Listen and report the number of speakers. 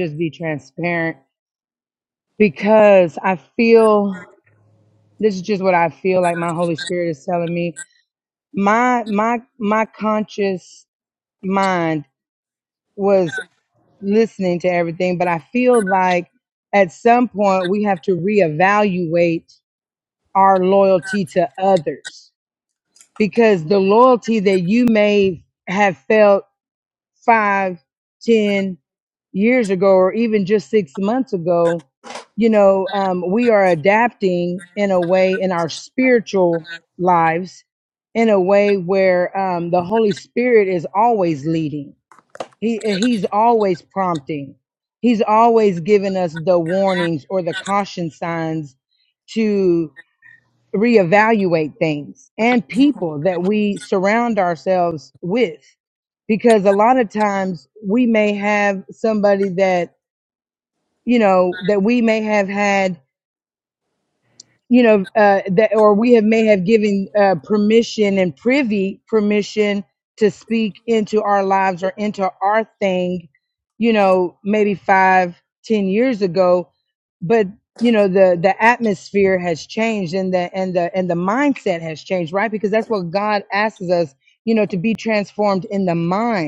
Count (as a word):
one